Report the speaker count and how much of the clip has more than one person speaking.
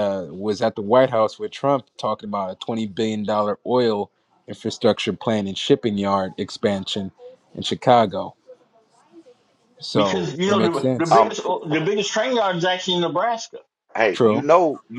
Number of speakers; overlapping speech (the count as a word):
three, about 11%